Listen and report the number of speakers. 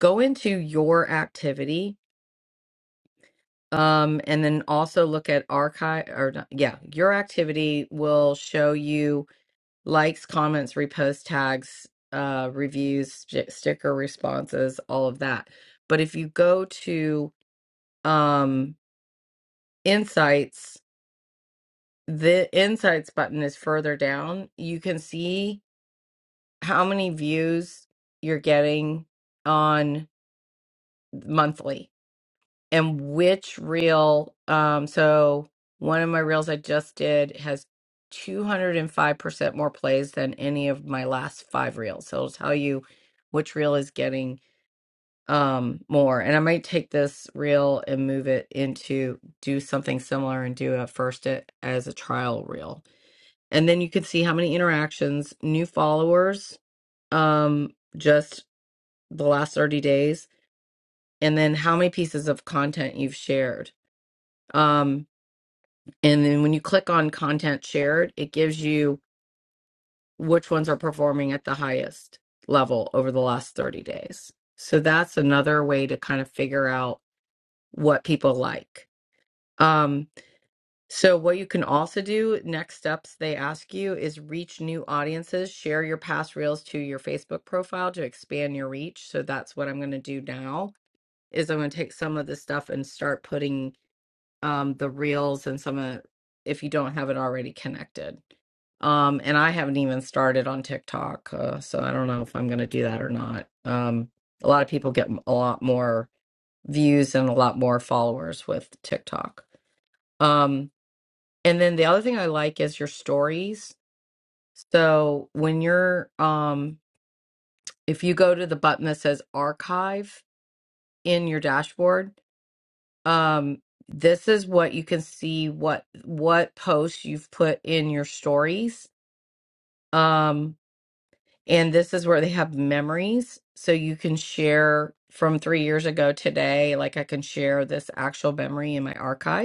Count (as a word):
one